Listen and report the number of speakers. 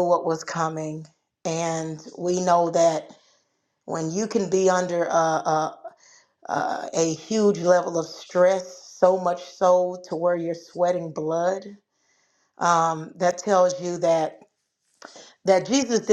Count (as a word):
one